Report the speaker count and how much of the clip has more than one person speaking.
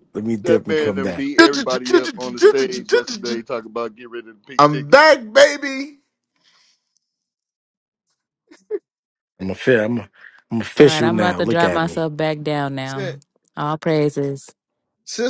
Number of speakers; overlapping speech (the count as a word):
four, about 16%